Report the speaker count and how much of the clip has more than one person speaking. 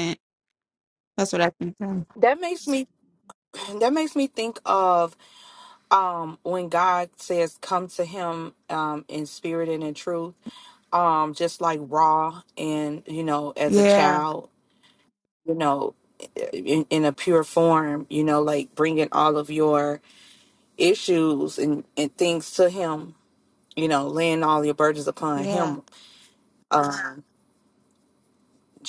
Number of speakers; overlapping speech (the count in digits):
2, about 3%